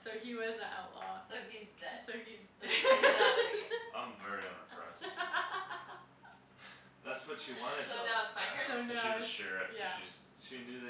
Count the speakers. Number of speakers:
4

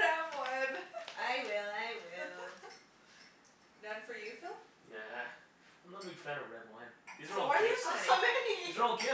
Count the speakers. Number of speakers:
3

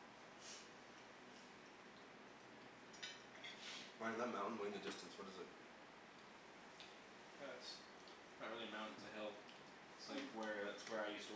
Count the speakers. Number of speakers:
2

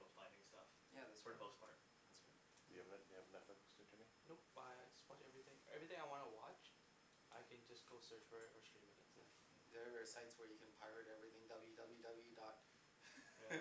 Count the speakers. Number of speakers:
4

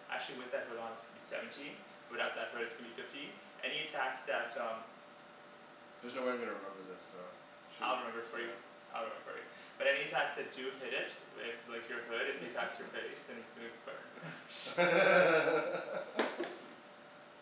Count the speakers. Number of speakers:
2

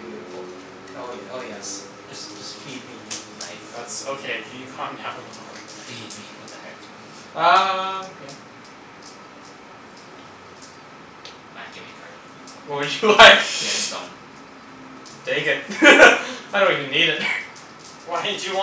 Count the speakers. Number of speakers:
3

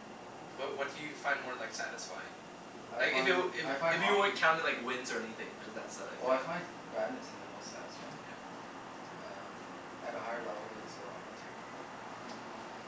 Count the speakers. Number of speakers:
2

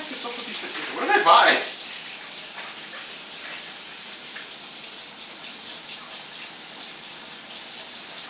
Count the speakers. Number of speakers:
1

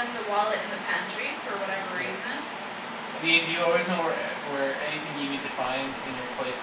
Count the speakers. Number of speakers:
2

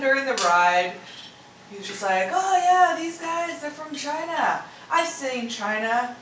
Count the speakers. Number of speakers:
1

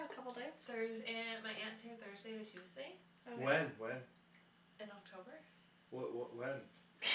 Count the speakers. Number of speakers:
3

